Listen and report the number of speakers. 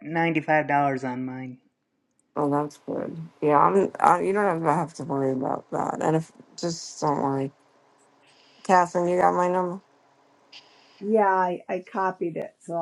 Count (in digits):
3